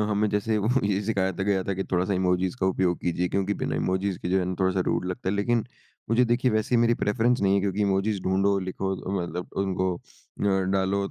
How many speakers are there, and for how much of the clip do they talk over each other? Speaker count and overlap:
one, no overlap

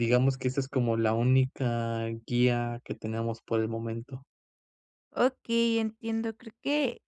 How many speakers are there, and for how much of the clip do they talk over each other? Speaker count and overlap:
two, no overlap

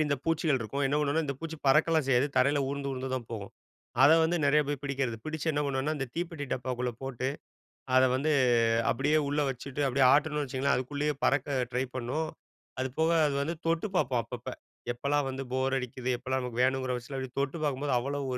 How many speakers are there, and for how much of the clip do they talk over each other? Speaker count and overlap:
one, no overlap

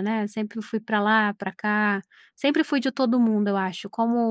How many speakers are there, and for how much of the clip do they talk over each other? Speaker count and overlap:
one, no overlap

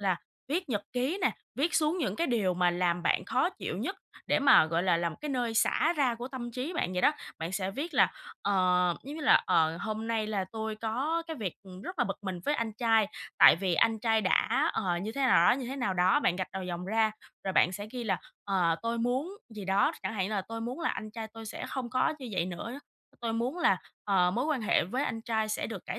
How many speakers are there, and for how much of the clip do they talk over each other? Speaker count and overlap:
one, no overlap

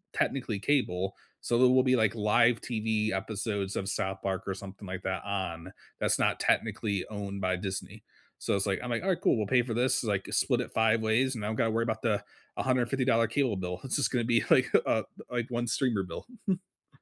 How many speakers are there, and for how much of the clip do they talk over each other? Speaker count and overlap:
one, no overlap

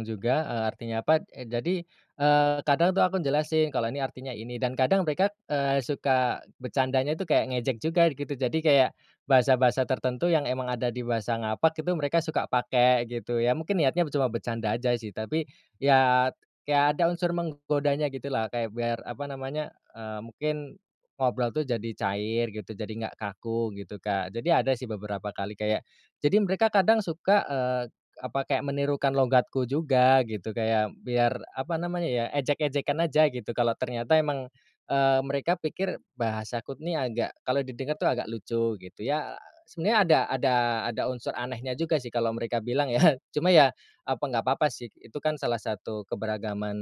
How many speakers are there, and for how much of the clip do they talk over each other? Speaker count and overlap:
one, no overlap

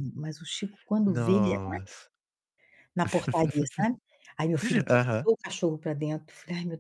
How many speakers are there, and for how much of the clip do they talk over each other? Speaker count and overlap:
two, about 14%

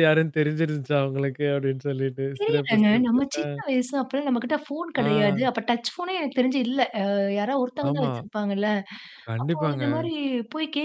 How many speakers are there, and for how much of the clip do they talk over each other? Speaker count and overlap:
two, about 25%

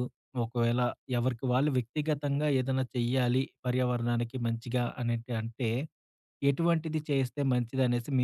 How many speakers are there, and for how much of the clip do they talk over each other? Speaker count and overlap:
one, no overlap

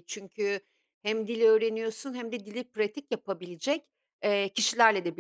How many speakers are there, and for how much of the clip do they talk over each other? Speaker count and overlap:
one, no overlap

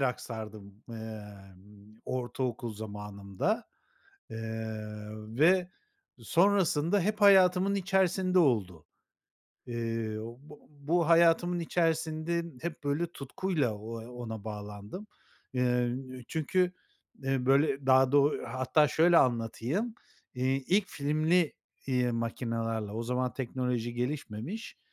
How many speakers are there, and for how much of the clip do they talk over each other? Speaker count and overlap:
one, no overlap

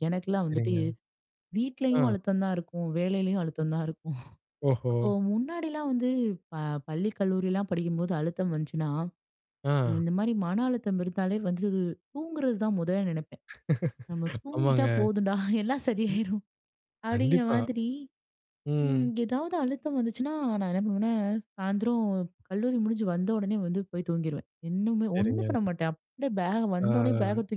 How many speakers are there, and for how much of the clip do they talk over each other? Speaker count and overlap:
two, about 10%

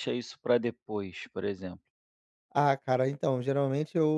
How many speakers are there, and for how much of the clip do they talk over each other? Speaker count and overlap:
two, no overlap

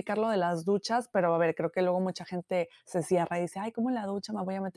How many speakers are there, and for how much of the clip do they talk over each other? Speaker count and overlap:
one, no overlap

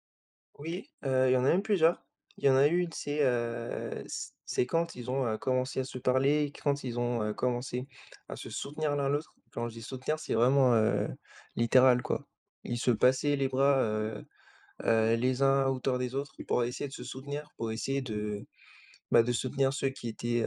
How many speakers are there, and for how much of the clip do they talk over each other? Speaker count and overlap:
one, no overlap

